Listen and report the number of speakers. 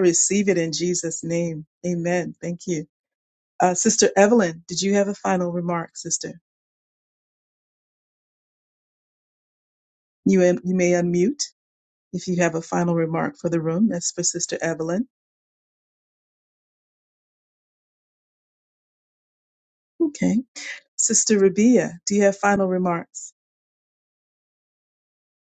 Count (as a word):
one